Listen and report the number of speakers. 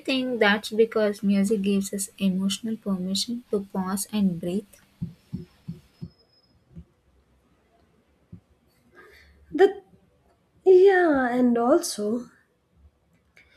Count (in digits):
2